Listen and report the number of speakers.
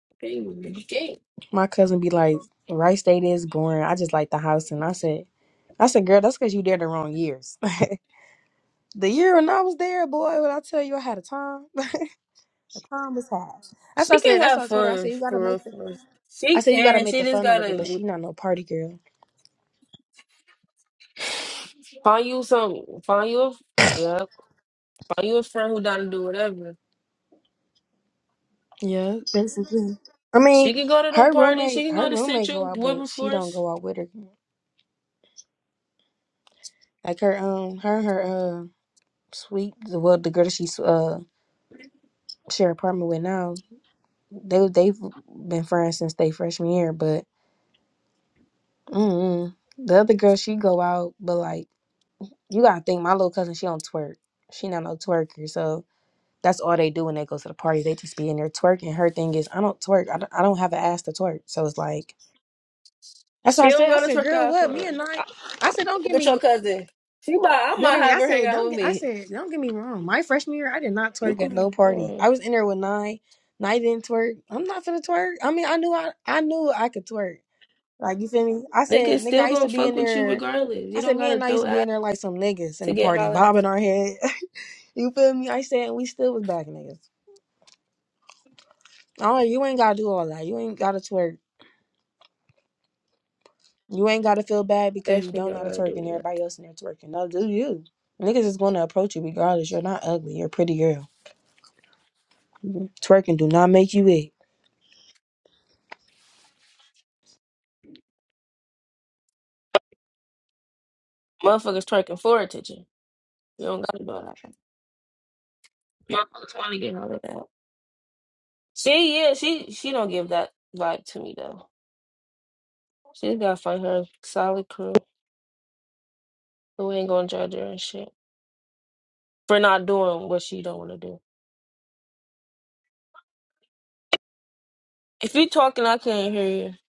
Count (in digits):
2